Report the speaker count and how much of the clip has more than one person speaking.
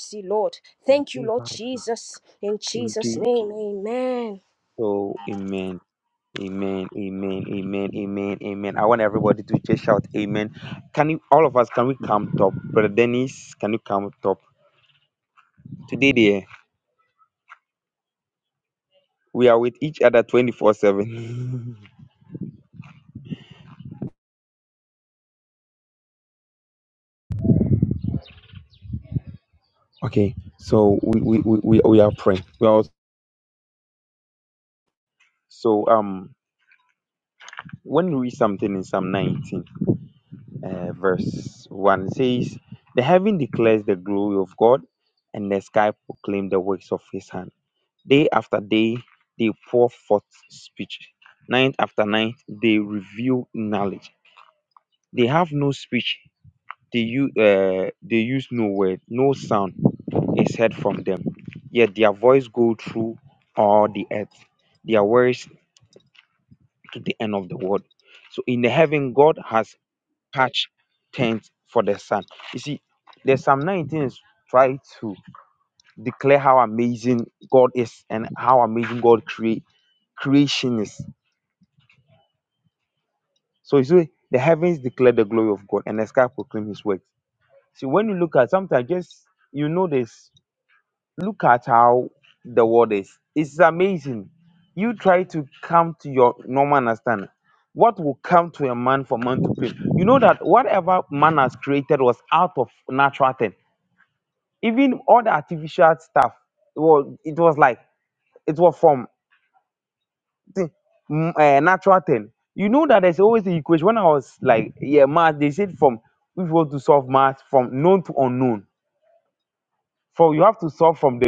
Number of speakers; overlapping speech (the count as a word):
two, under 1%